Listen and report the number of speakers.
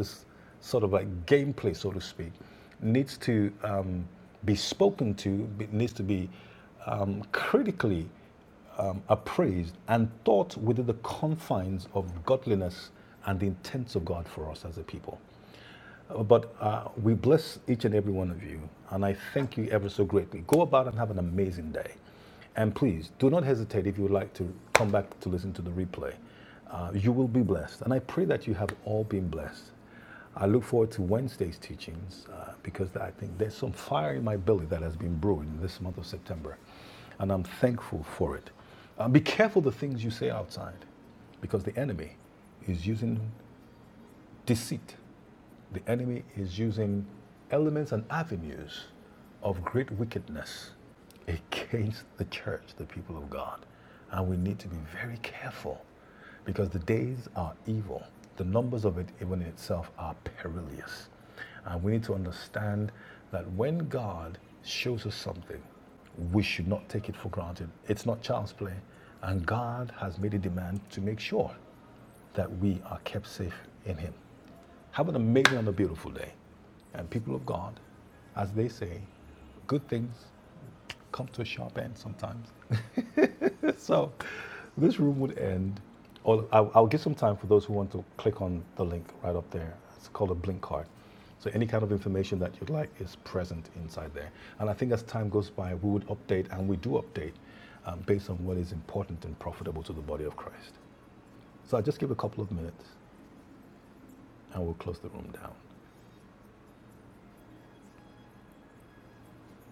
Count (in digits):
1